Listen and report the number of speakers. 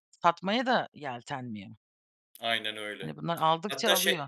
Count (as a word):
two